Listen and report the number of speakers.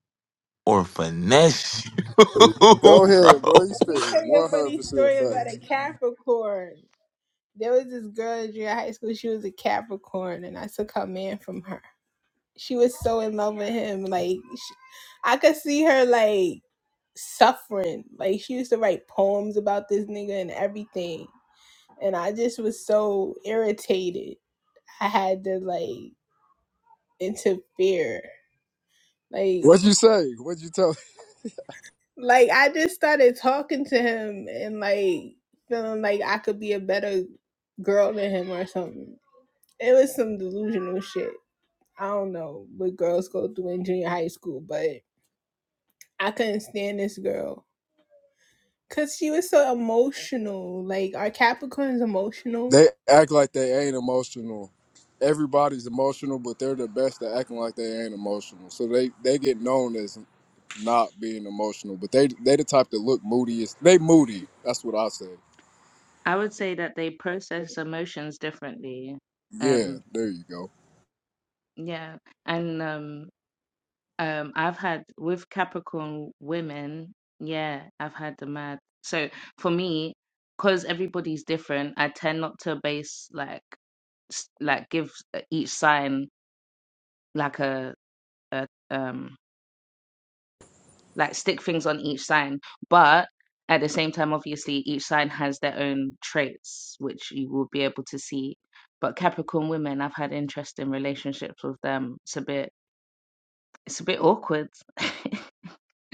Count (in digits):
4